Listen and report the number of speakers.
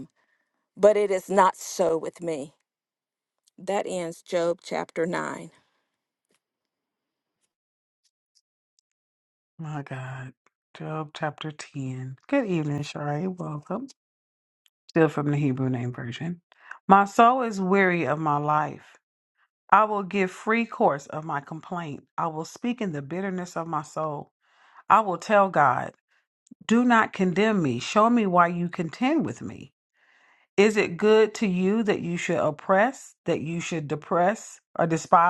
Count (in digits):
2